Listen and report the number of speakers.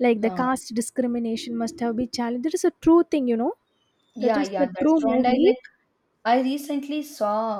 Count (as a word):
two